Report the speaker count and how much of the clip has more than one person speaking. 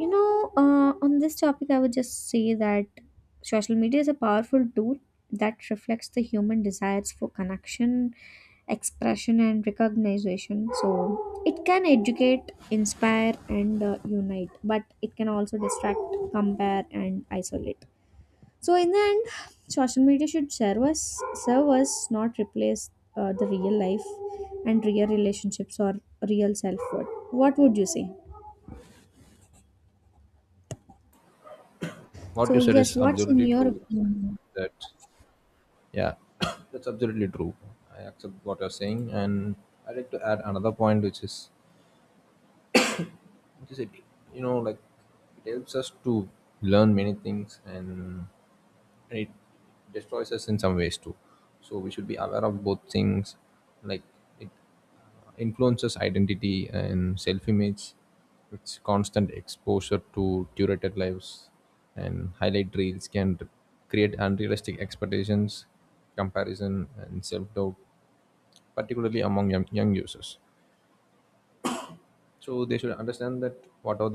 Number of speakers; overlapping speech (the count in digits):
2, about 2%